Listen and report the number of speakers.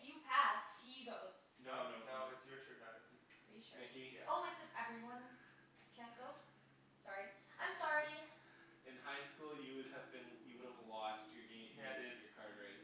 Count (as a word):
three